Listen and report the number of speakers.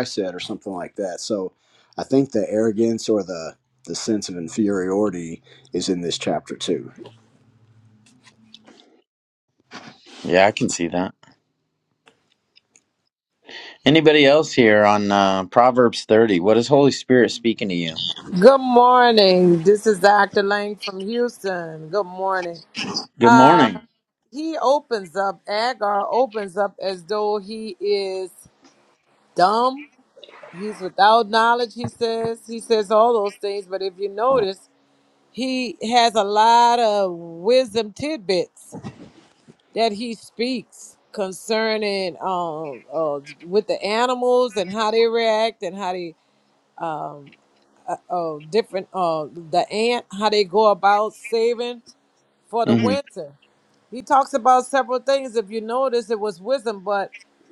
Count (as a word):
three